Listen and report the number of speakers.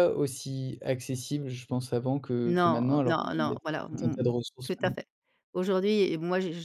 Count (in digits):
2